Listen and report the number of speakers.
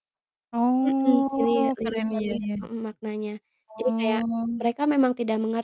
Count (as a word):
two